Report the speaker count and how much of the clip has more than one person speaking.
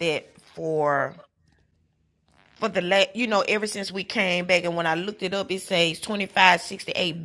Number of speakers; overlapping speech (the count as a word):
one, no overlap